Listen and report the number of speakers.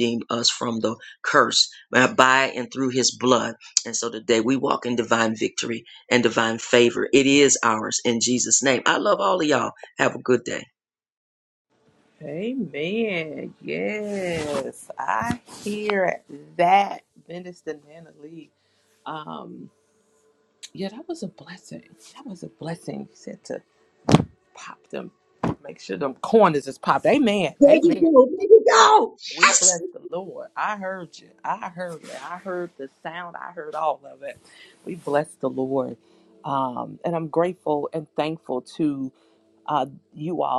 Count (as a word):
two